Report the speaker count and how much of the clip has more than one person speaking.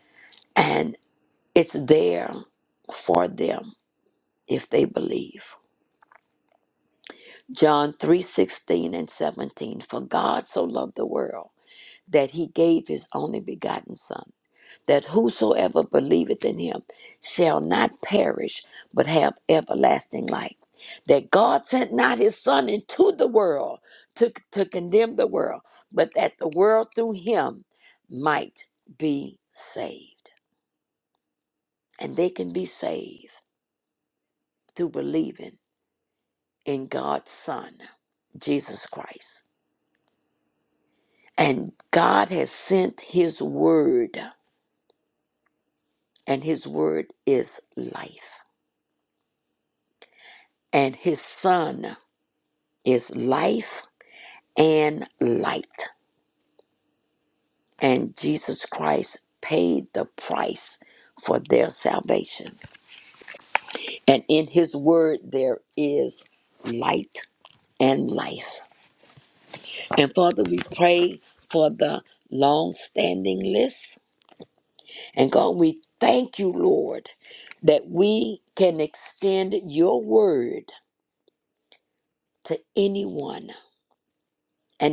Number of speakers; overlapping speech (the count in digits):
1, no overlap